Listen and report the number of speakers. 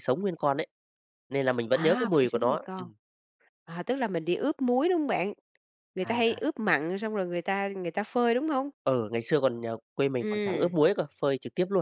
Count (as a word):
two